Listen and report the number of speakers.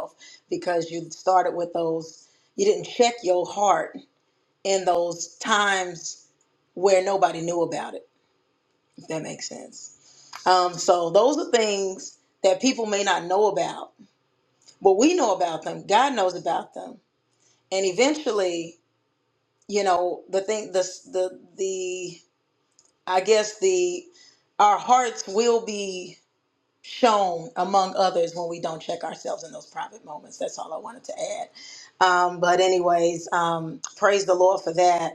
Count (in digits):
1